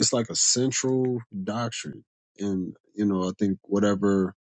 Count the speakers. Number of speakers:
one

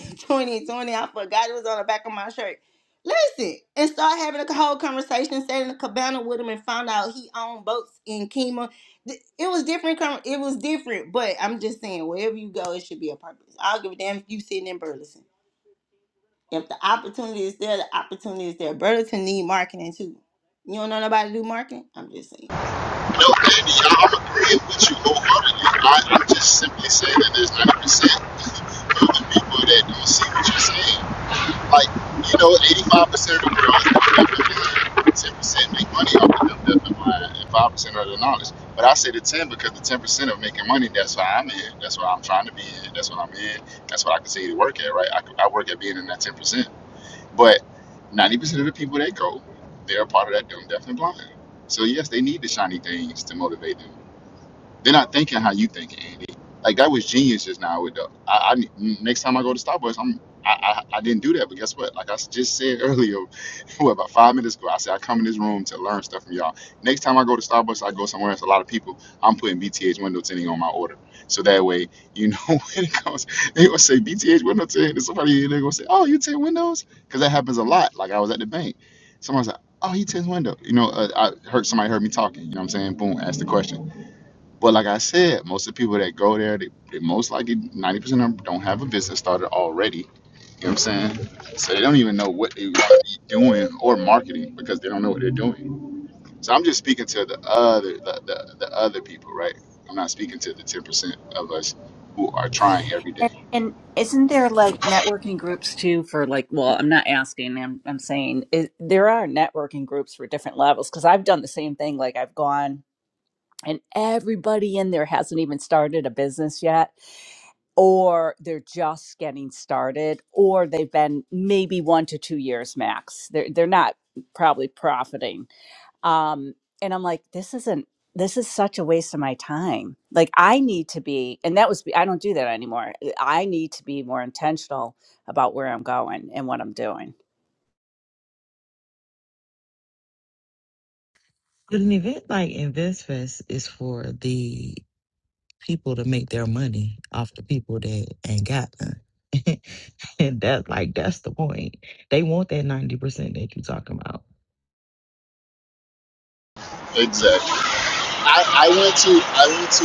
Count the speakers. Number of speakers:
four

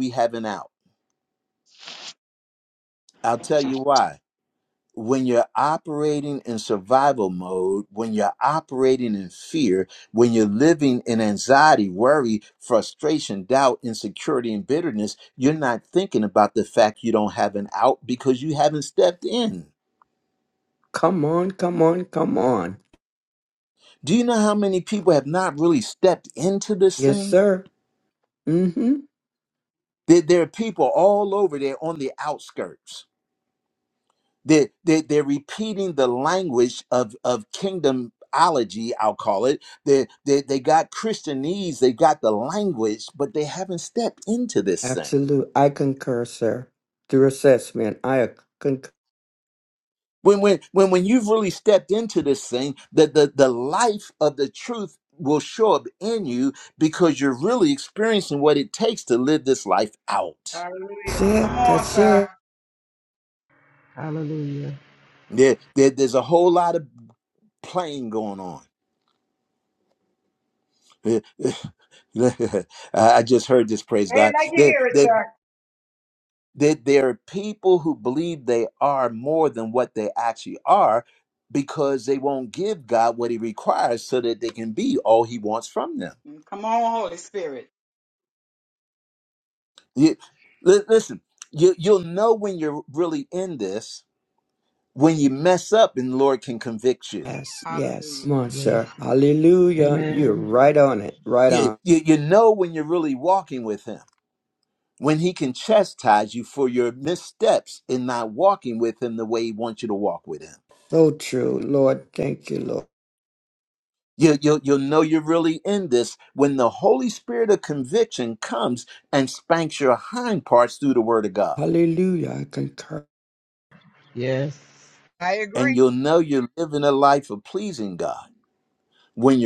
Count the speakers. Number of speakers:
four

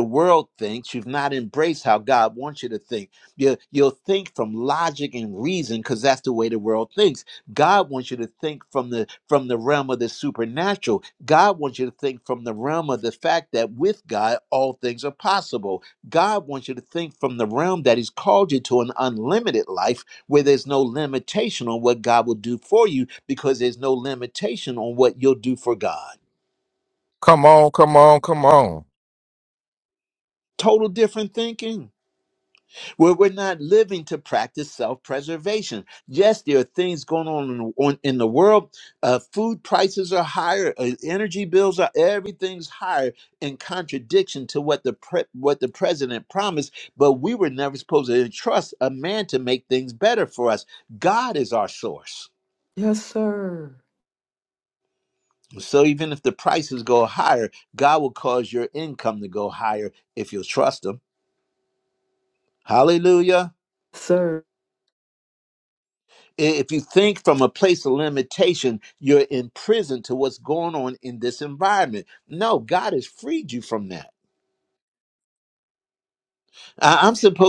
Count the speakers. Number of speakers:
three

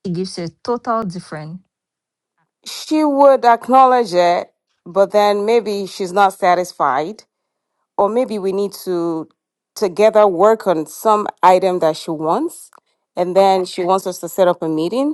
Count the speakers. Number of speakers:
two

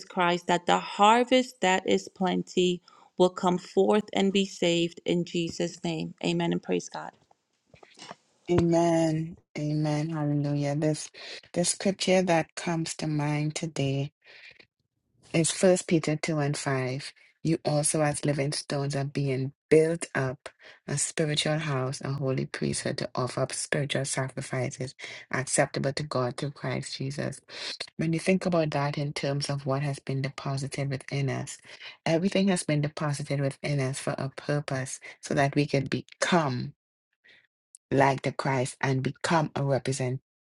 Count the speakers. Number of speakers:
two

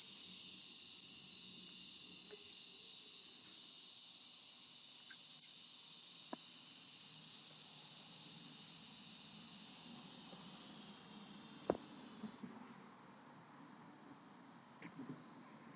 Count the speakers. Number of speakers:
zero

